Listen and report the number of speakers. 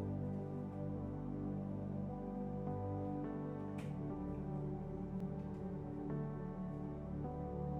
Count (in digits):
0